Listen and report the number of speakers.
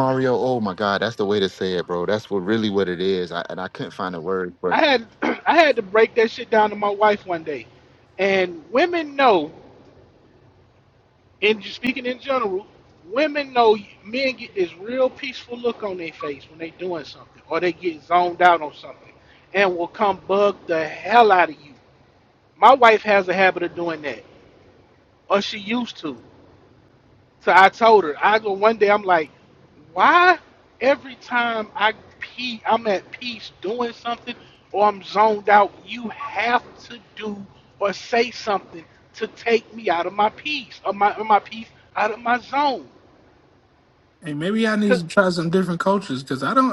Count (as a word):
three